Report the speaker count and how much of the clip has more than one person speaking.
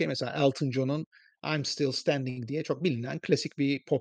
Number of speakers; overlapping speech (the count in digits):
1, no overlap